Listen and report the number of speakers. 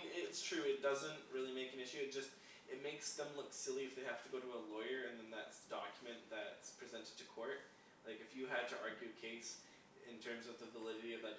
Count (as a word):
one